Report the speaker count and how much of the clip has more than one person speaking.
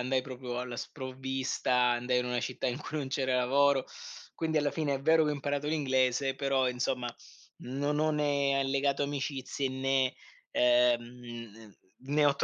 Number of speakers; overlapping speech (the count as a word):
one, no overlap